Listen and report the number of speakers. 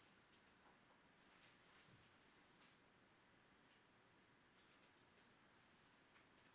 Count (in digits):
0